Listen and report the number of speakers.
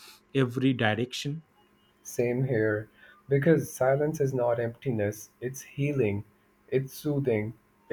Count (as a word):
two